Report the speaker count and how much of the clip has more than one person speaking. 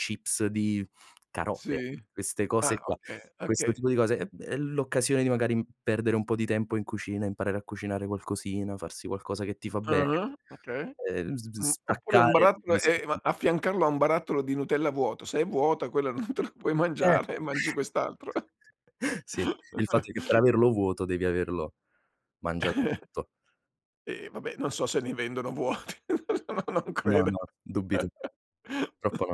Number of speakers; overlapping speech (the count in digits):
2, about 11%